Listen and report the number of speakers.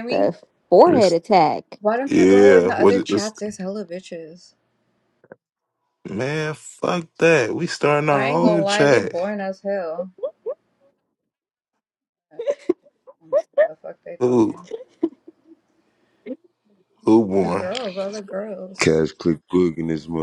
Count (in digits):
4